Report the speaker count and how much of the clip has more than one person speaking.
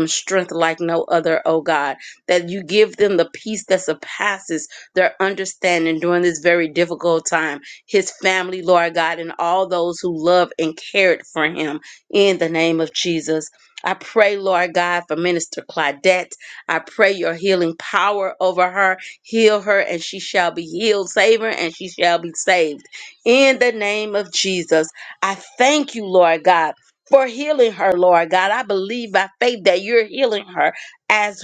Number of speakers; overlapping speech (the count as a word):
one, no overlap